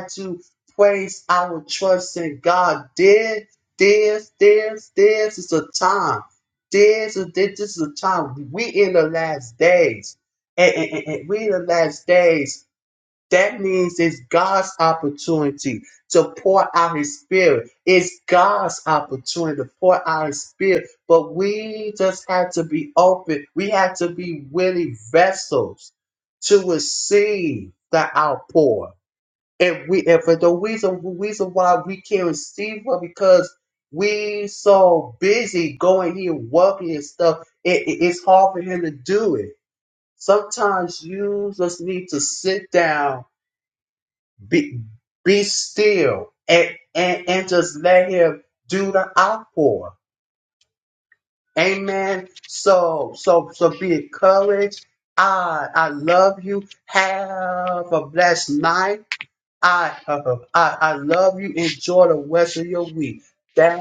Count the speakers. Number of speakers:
1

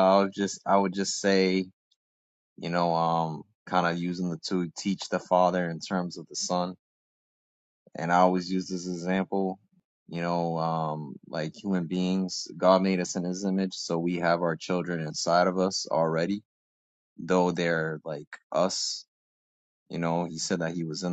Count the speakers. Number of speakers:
1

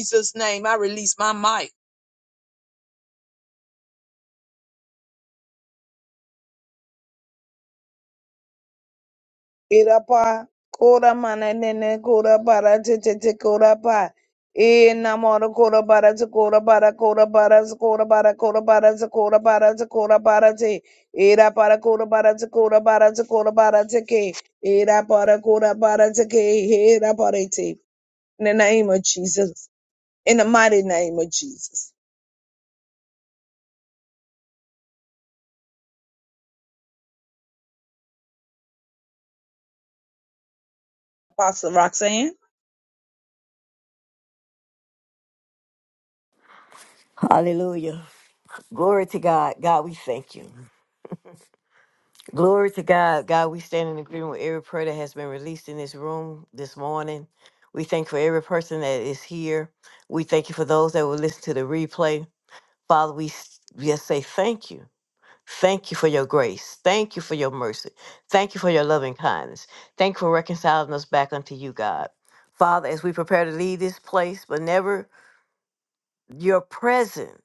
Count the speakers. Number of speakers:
2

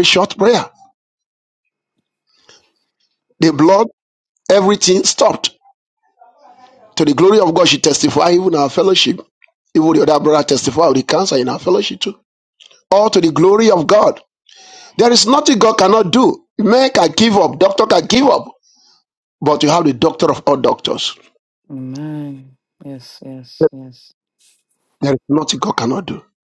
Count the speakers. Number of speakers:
2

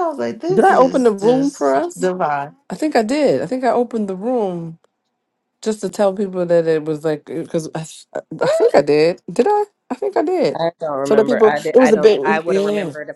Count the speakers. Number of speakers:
3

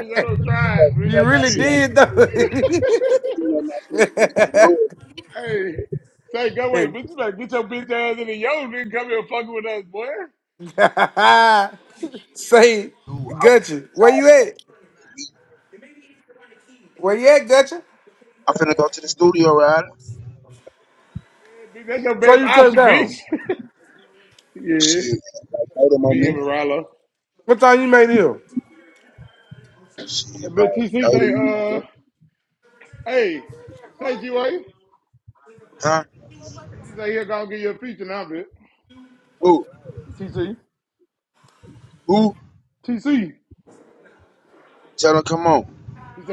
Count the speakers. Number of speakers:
3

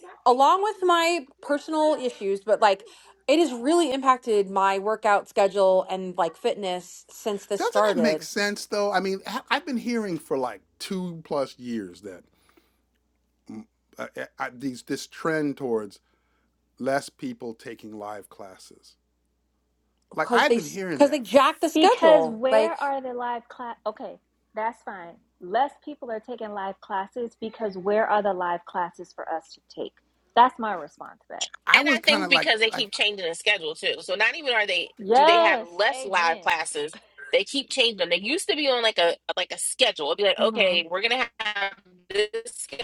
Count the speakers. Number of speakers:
4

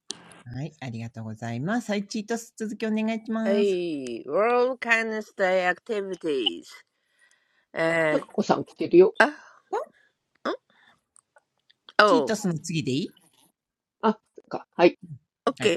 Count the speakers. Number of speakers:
3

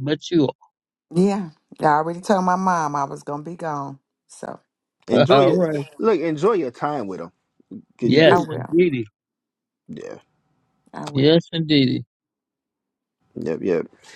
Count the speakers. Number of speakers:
3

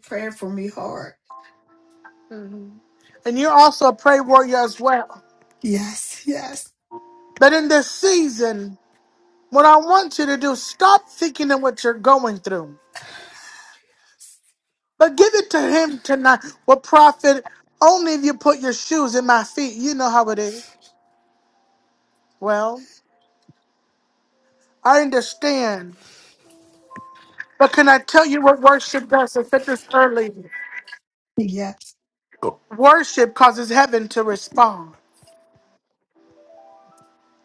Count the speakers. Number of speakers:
2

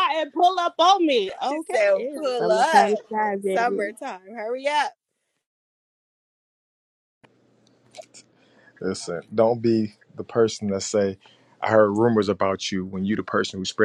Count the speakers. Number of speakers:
3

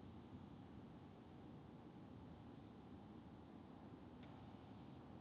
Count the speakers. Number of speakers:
0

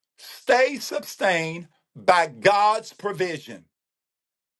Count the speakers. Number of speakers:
1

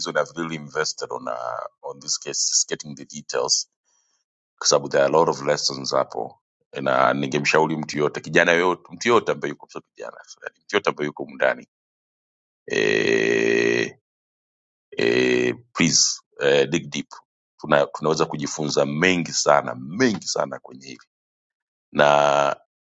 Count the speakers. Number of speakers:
1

